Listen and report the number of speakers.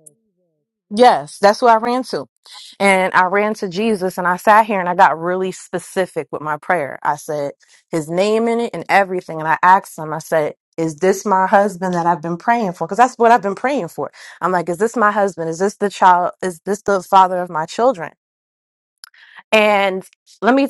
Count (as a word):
one